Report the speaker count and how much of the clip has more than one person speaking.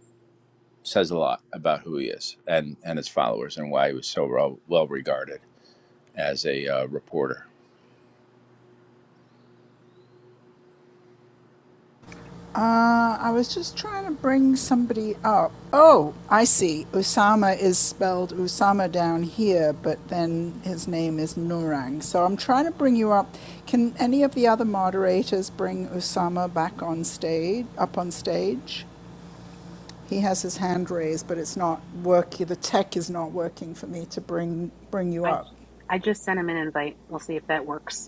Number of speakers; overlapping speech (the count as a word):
three, under 1%